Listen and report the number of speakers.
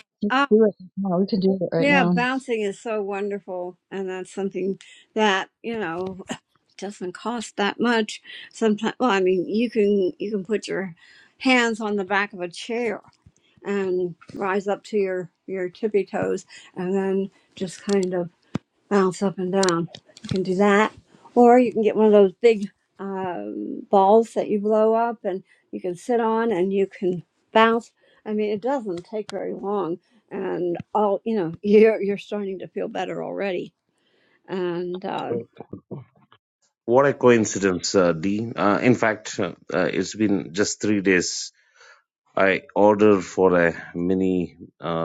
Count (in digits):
3